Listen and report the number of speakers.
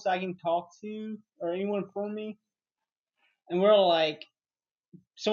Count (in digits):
1